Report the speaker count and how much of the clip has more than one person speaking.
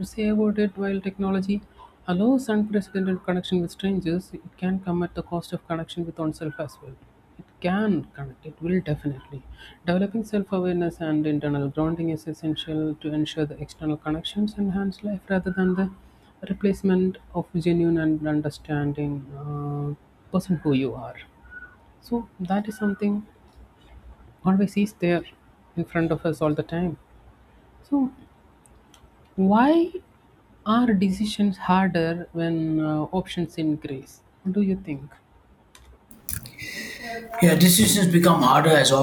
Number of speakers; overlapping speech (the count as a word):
two, no overlap